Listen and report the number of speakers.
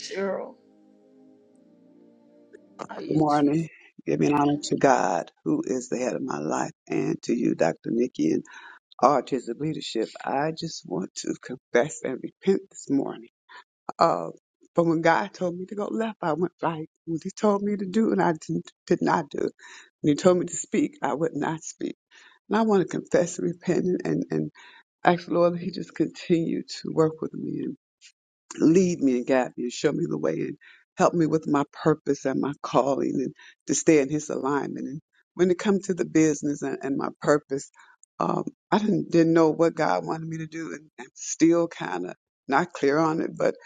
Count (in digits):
2